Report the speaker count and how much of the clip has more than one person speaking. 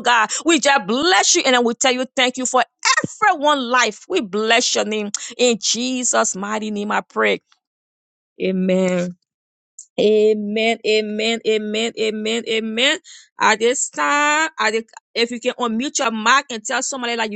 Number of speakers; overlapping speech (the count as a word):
one, no overlap